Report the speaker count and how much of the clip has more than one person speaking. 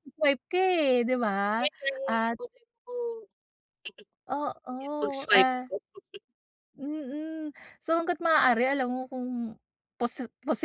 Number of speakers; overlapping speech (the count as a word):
two, about 12%